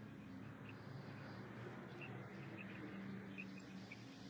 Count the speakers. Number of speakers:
0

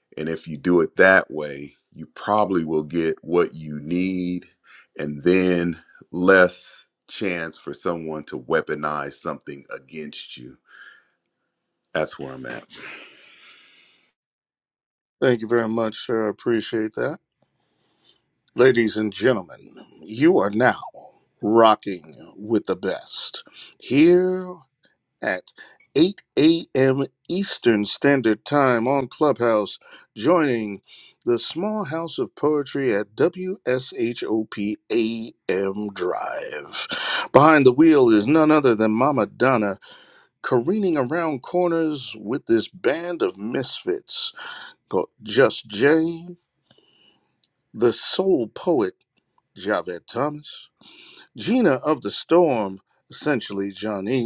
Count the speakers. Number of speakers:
2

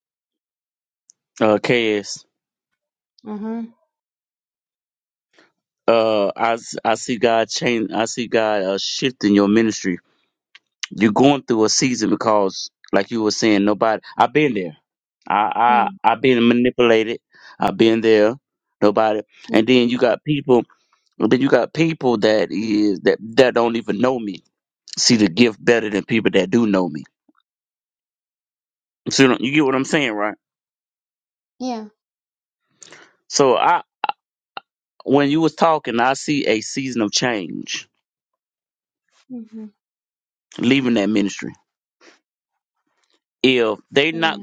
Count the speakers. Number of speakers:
2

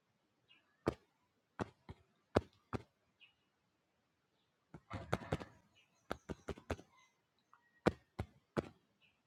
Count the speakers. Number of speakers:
0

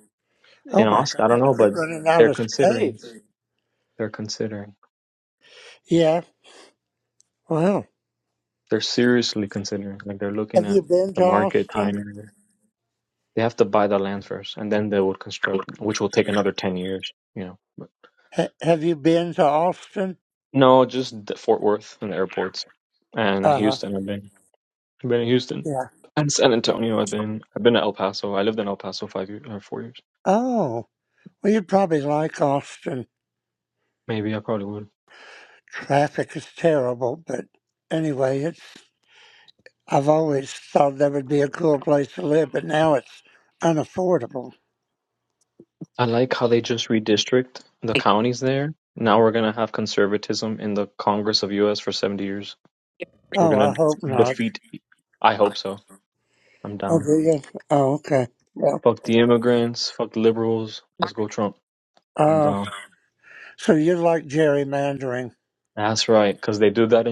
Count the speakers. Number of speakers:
2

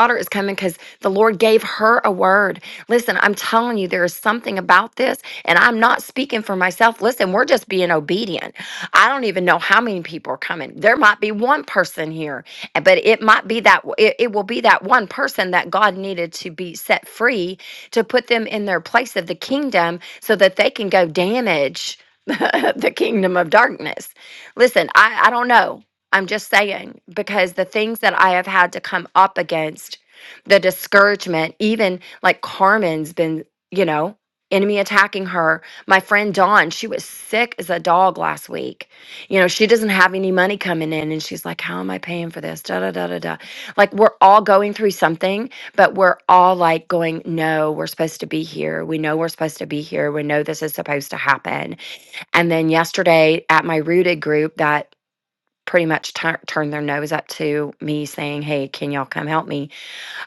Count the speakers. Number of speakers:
1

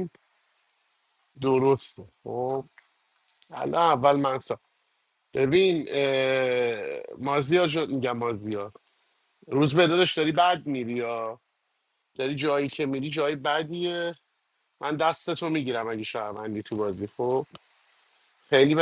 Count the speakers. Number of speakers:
1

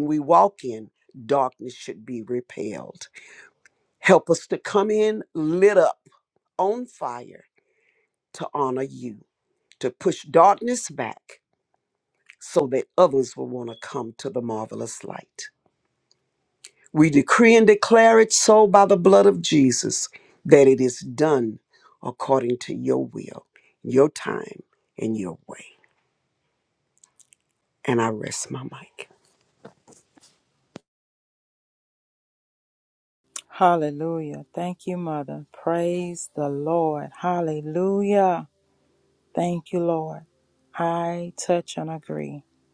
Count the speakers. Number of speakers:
2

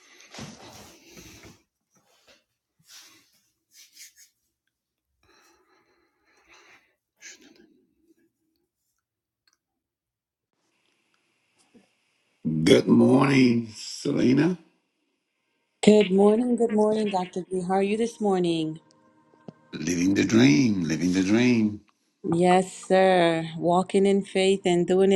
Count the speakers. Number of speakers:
2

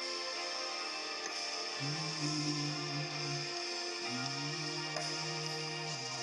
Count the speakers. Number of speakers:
0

